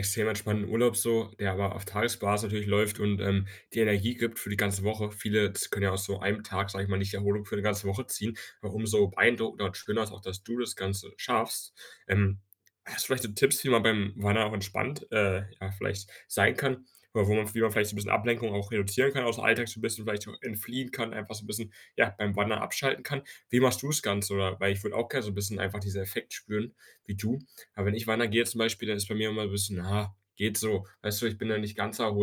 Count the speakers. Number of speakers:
one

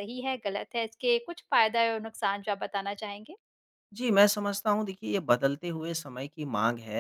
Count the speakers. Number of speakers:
two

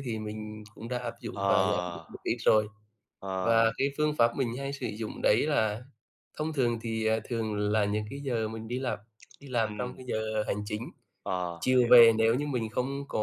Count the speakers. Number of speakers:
two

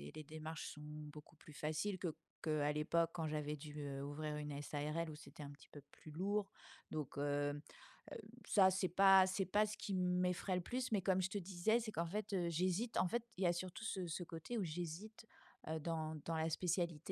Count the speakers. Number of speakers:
one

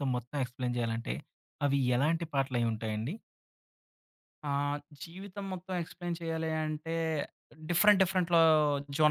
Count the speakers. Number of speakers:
two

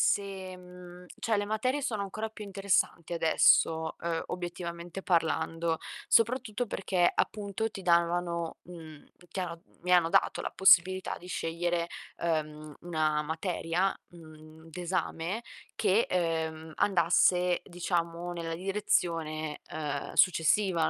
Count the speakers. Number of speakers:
one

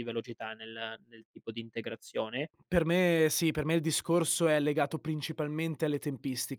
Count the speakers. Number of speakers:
two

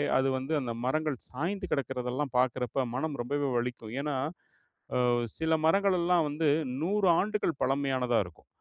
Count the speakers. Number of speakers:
one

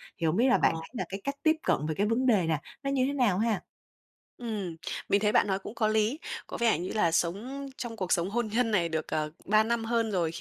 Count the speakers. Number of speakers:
two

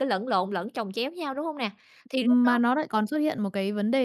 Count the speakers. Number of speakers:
two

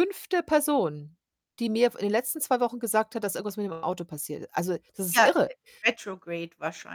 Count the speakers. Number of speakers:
two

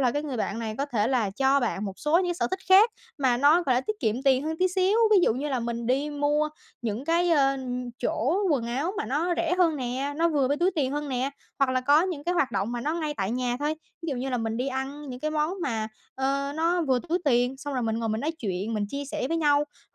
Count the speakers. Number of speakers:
one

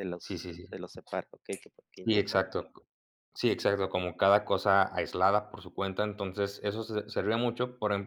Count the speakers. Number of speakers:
two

